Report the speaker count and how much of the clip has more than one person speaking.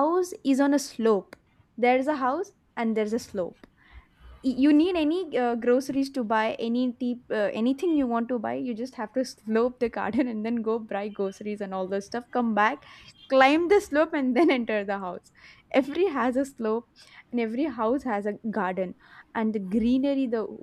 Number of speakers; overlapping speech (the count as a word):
one, no overlap